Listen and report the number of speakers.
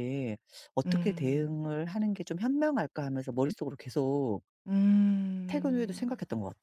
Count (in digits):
2